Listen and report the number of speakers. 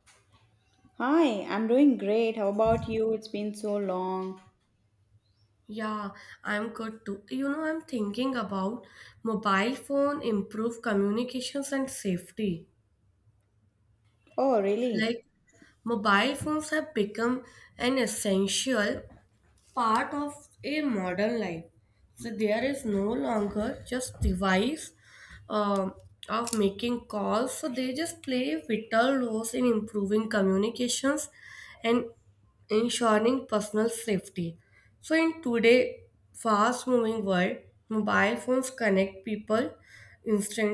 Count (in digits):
2